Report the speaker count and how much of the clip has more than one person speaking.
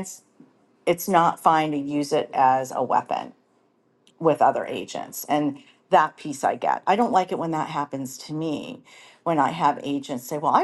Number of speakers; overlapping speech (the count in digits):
1, no overlap